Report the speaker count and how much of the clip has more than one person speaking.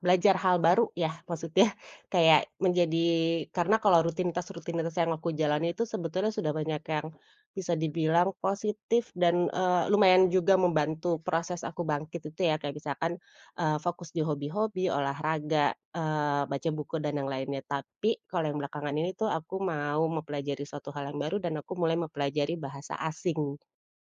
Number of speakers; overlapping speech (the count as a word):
one, no overlap